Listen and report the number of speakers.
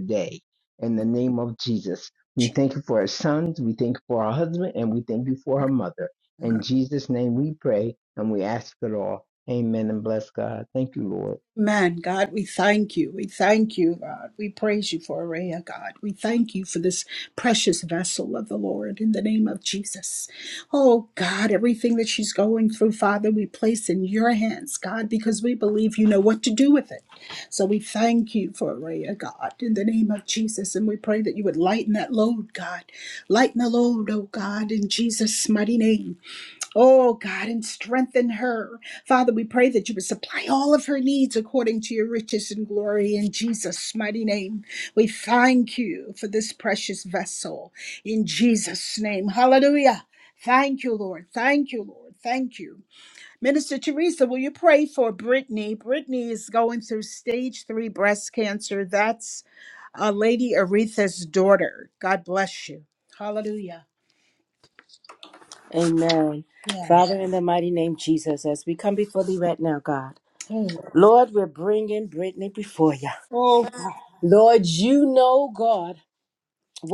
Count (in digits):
3